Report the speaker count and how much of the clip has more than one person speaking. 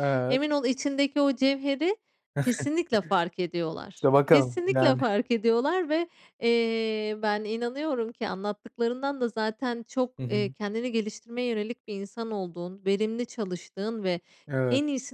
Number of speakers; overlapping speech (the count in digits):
2, about 8%